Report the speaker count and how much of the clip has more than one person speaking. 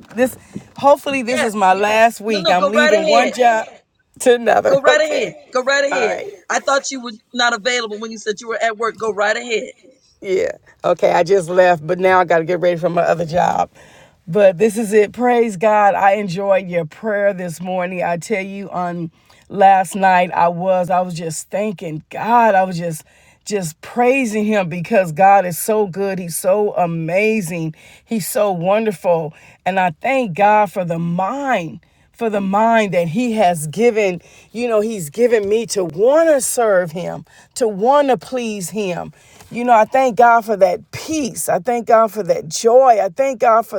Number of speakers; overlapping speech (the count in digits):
2, about 6%